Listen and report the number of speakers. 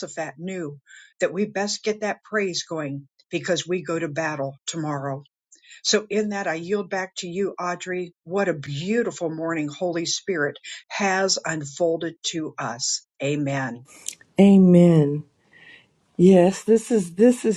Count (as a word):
two